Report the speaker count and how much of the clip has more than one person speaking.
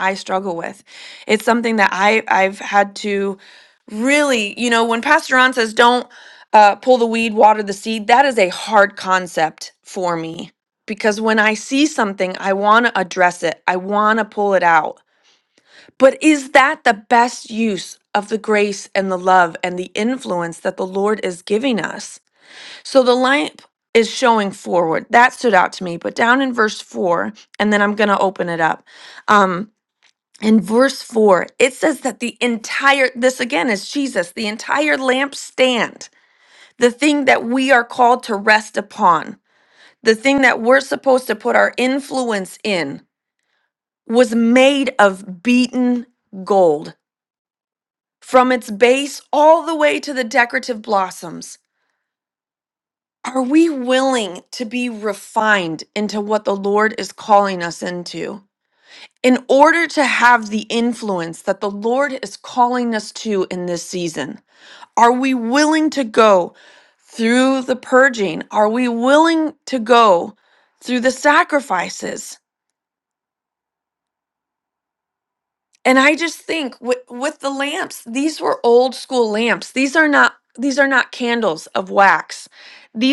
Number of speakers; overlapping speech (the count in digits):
1, no overlap